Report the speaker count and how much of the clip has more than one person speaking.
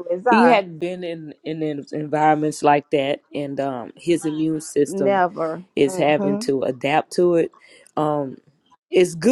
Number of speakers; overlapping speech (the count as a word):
two, about 13%